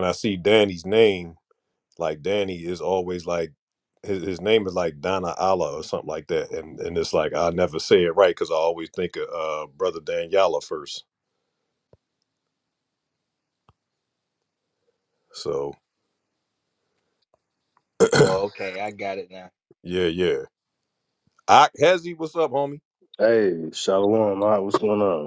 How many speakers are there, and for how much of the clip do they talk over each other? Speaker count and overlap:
3, no overlap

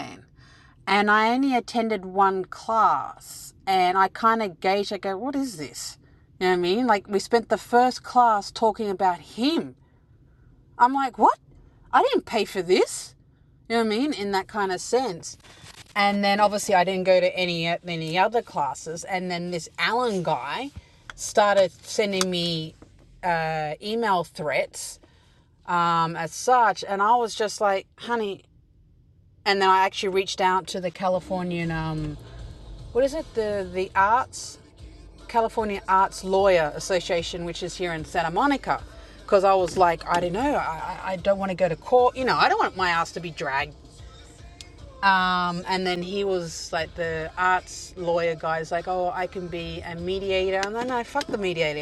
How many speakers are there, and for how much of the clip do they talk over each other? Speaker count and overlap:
1, no overlap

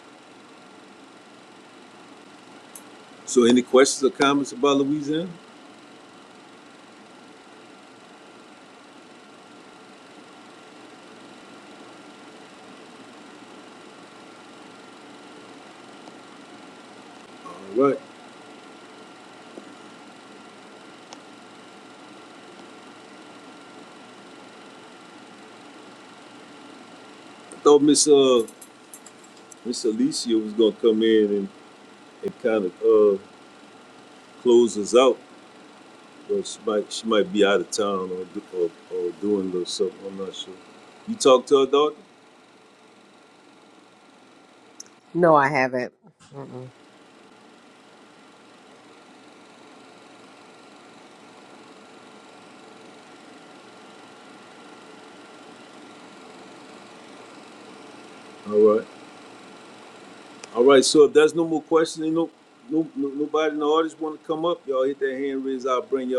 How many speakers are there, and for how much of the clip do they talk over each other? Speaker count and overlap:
2, no overlap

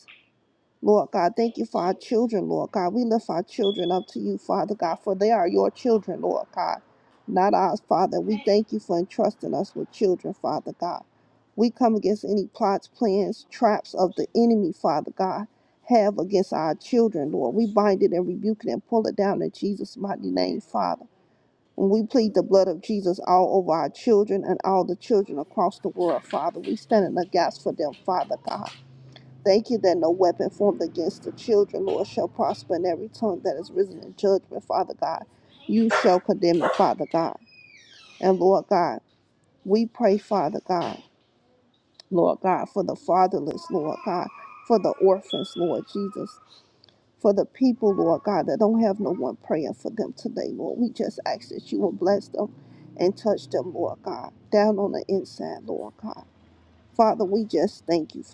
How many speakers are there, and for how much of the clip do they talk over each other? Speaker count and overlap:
1, no overlap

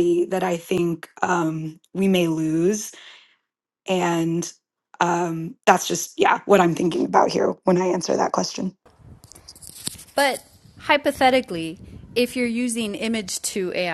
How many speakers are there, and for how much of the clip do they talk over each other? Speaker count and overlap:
2, no overlap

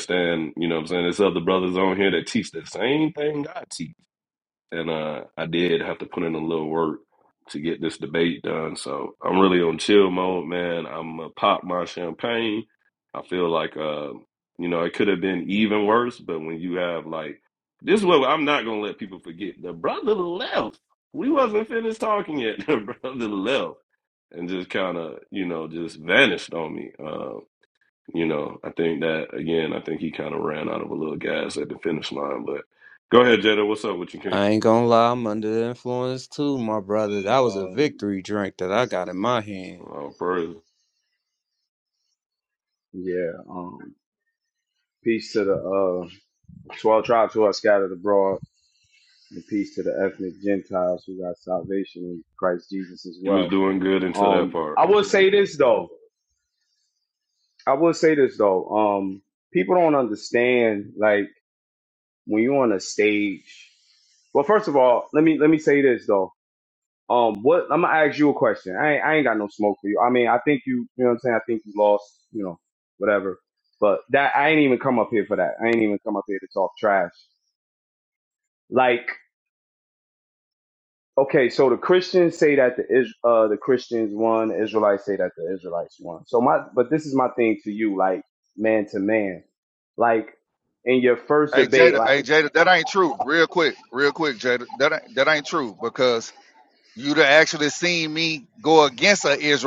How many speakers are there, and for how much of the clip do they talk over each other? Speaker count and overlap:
4, about 2%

